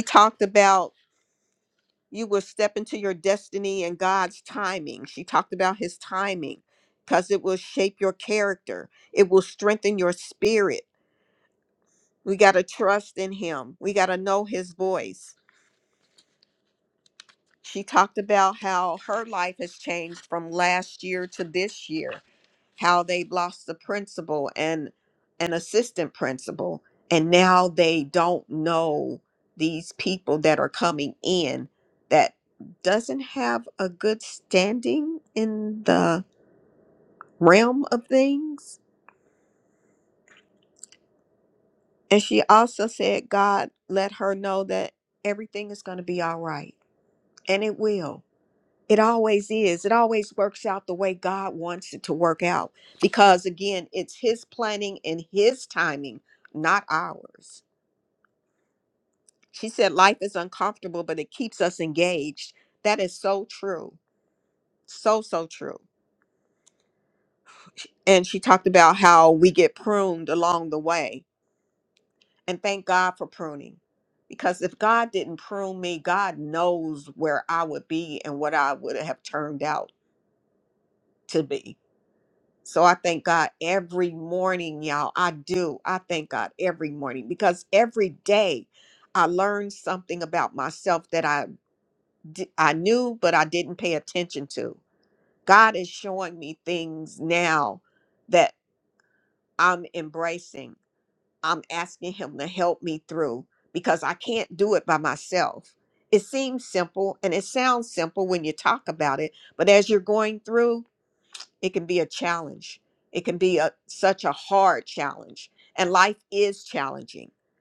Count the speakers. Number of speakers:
1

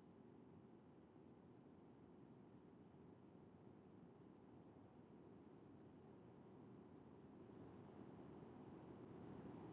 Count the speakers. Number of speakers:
0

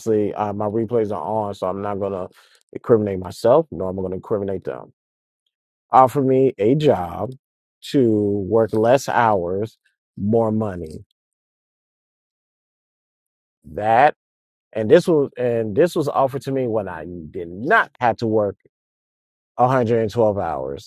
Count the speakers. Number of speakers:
1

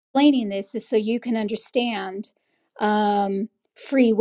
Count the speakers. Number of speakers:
1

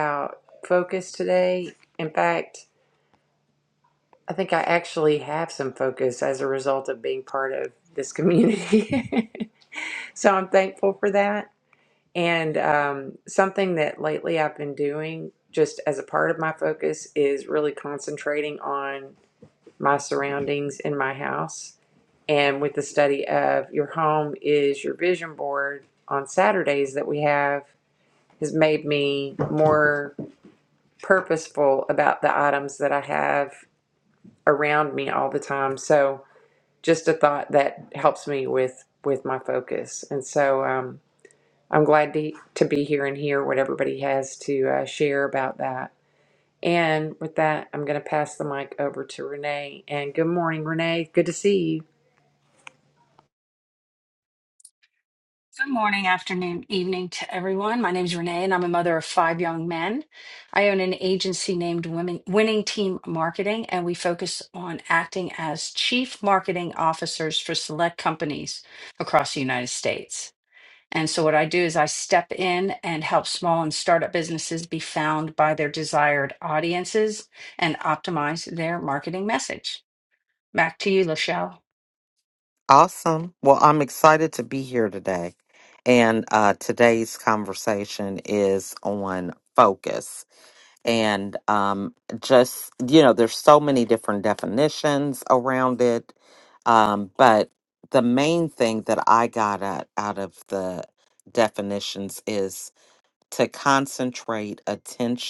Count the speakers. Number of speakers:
3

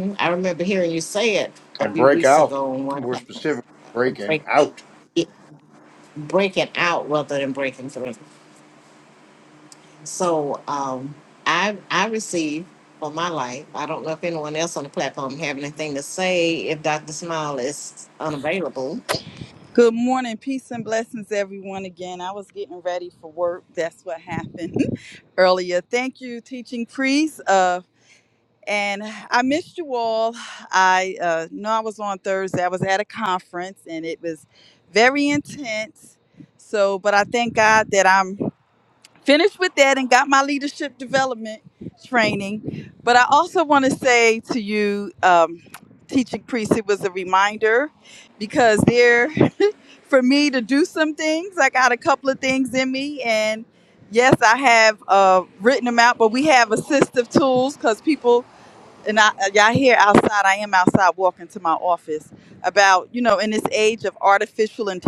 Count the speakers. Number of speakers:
3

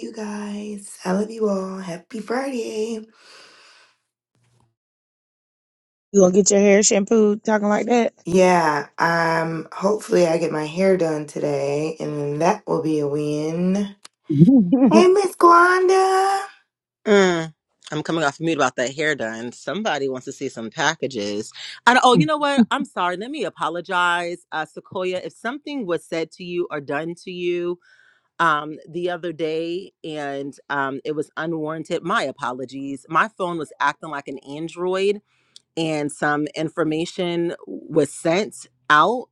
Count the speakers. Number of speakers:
3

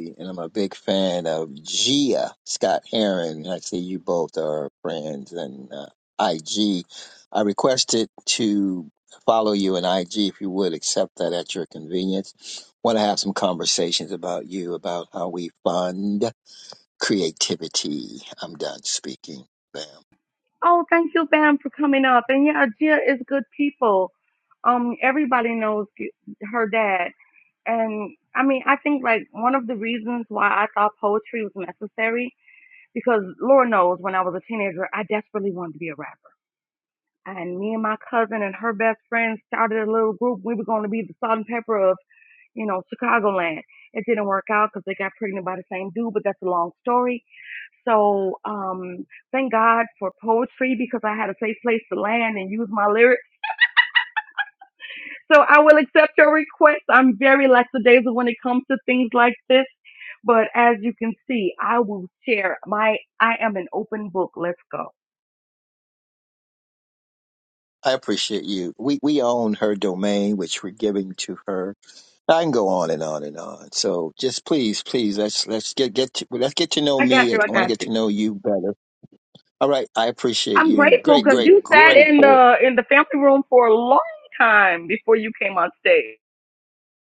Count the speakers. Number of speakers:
2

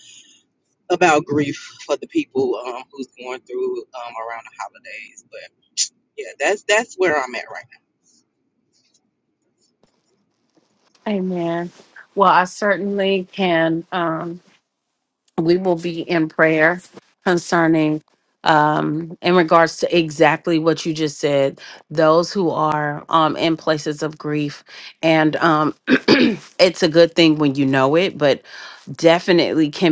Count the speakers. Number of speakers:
2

